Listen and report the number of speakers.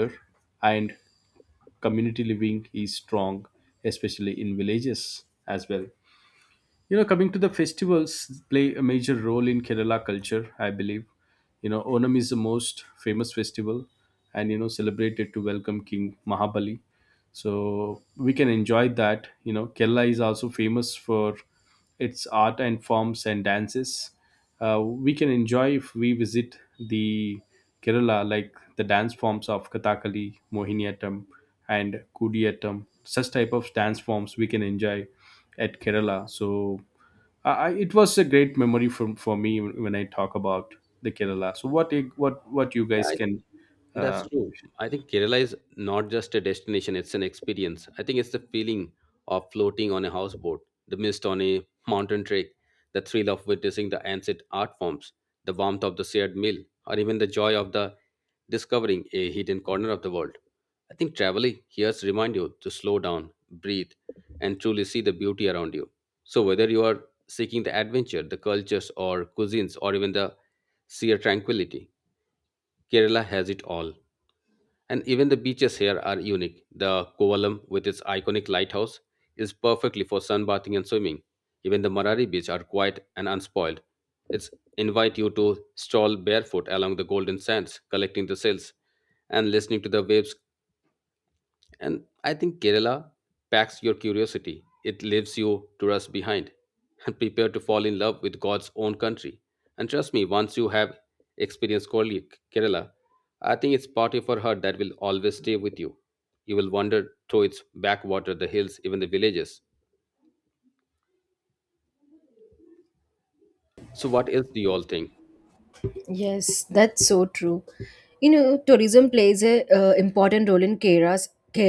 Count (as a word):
three